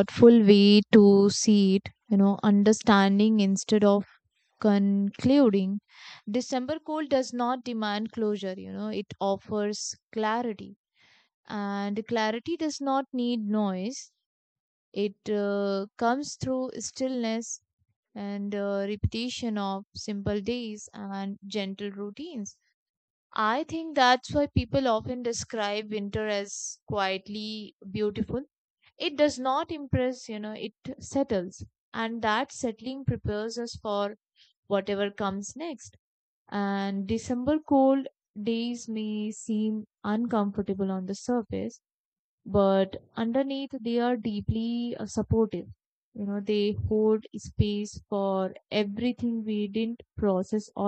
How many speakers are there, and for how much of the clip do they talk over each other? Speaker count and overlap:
one, no overlap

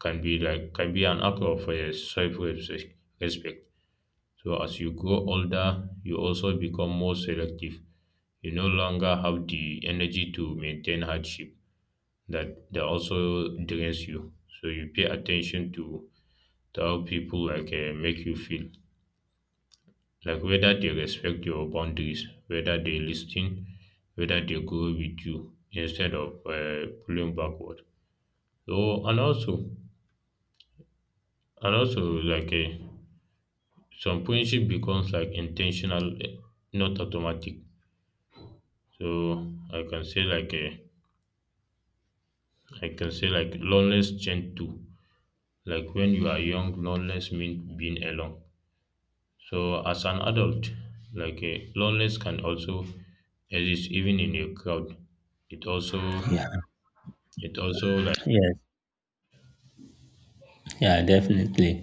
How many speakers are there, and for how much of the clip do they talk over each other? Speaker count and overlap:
two, no overlap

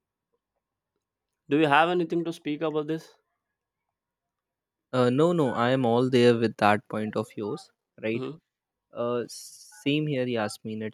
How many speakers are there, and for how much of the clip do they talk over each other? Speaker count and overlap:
two, about 1%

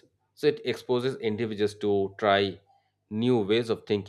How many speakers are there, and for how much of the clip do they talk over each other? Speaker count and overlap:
one, no overlap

